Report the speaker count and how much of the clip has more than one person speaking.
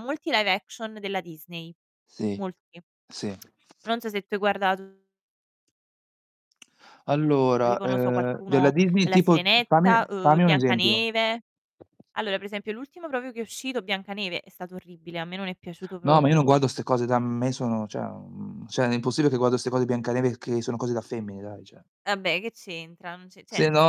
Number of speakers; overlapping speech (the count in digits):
2, about 16%